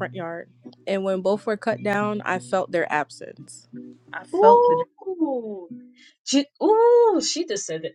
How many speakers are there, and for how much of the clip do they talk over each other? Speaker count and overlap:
2, about 6%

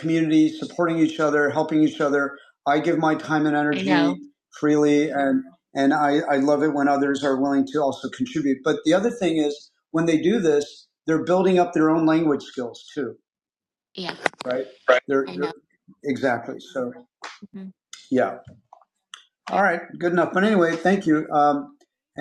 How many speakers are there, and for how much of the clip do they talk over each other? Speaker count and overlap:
2, about 4%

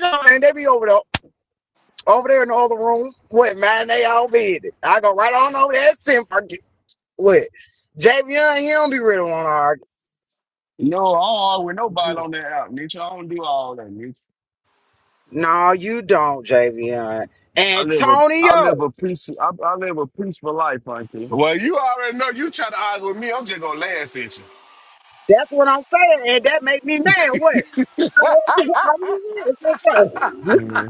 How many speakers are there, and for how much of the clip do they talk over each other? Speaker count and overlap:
3, about 3%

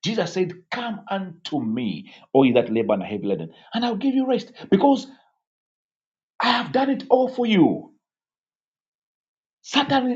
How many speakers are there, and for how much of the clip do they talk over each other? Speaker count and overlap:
1, no overlap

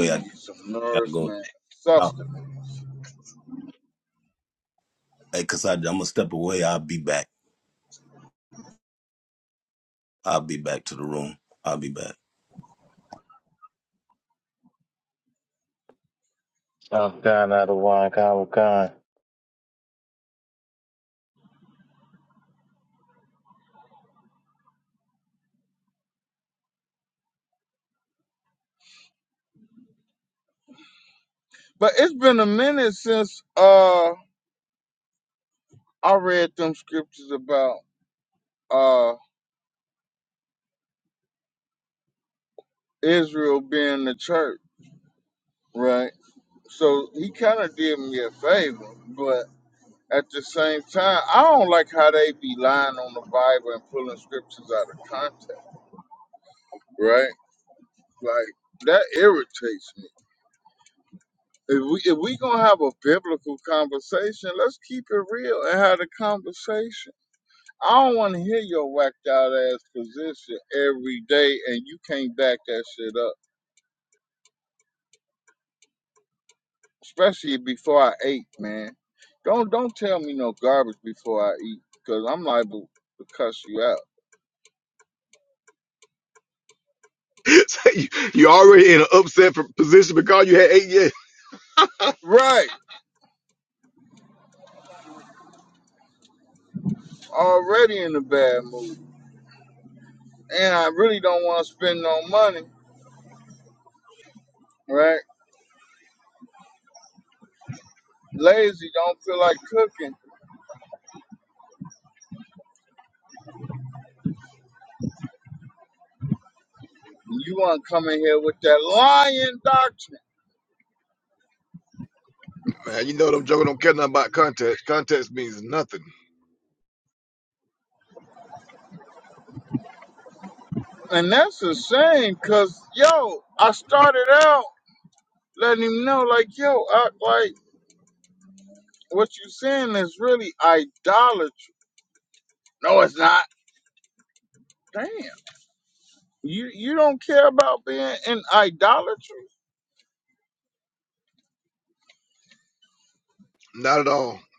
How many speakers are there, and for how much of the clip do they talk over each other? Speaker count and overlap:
4, under 1%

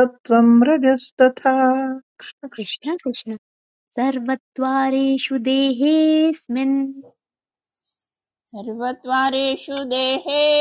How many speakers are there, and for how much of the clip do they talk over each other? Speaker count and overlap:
3, no overlap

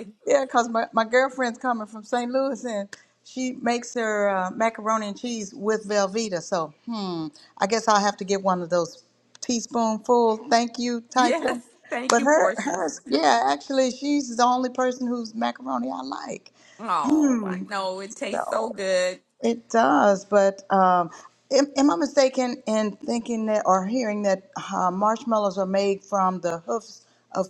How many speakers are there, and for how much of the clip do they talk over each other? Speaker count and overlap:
2, about 9%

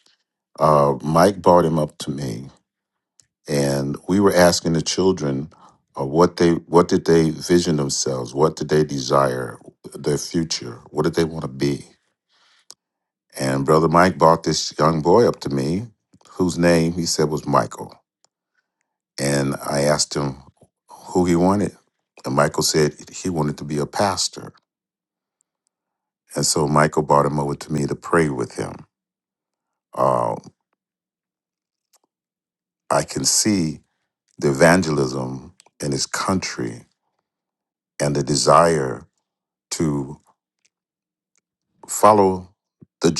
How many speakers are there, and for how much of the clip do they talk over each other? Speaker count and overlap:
1, no overlap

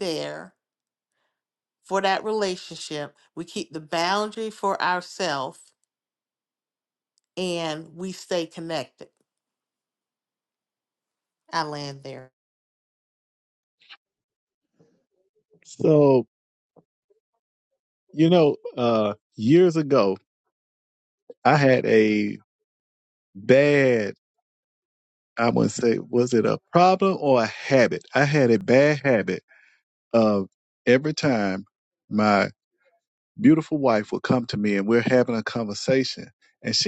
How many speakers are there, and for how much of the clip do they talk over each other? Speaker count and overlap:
2, no overlap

